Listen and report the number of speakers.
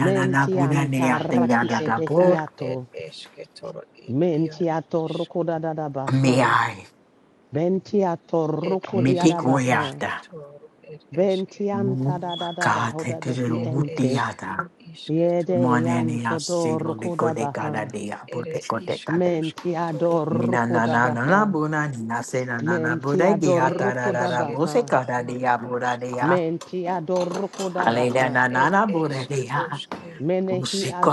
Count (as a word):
three